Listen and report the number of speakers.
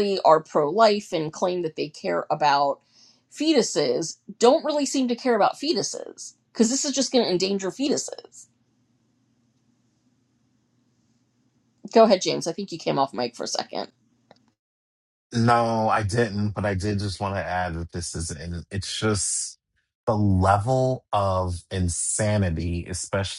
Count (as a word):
two